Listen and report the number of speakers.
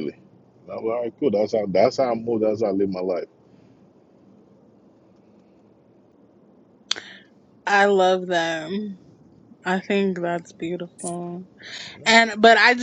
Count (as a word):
two